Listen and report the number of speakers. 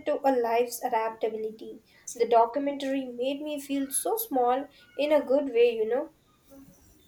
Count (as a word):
one